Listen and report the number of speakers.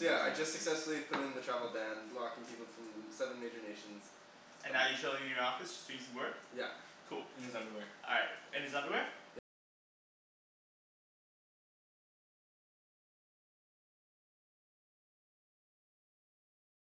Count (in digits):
3